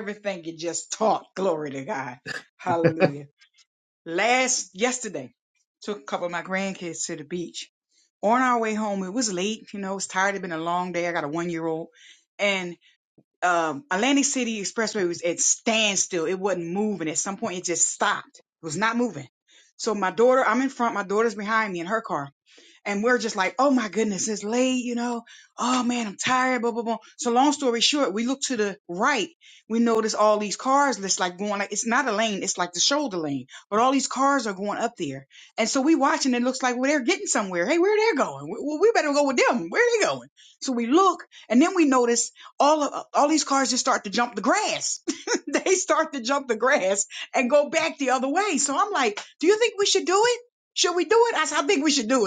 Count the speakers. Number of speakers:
1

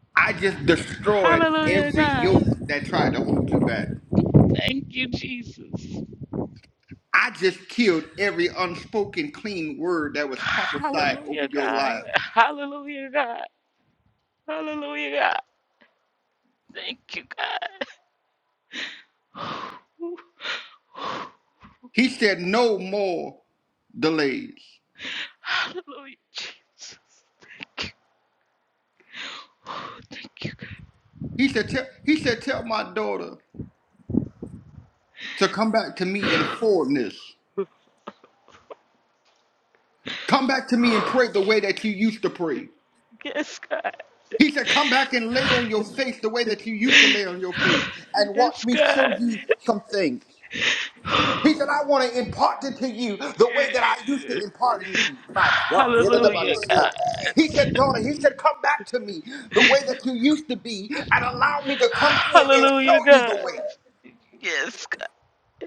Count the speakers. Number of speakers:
2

